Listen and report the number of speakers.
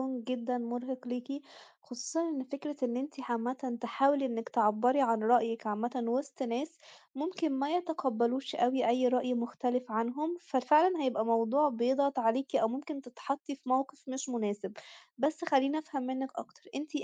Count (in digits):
1